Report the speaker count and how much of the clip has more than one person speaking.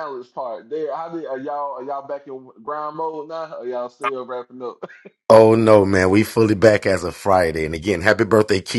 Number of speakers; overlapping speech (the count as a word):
two, no overlap